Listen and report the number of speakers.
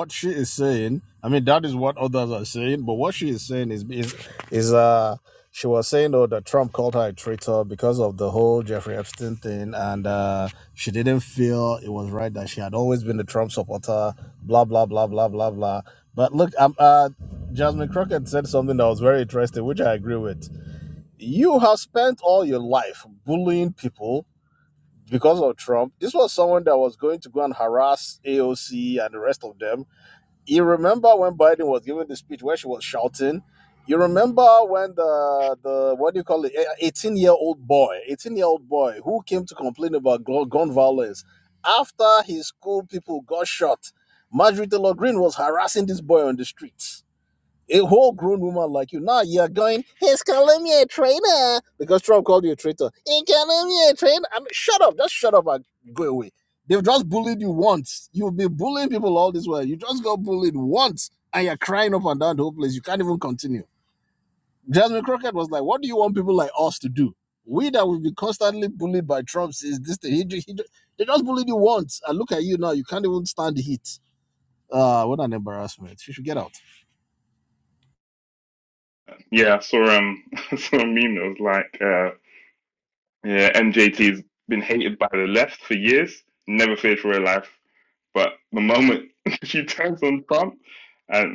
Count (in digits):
2